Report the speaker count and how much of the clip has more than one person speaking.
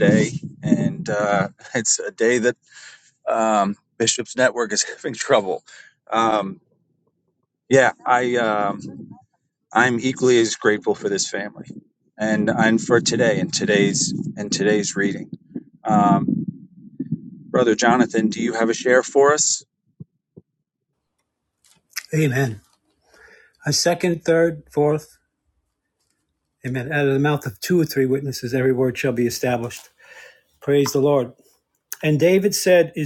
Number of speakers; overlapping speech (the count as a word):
two, no overlap